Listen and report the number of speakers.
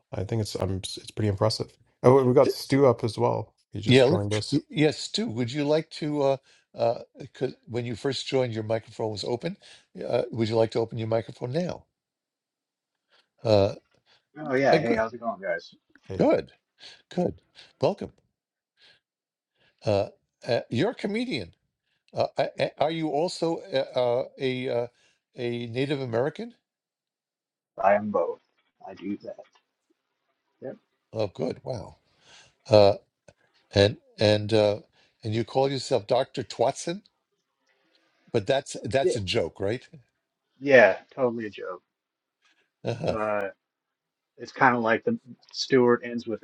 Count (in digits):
3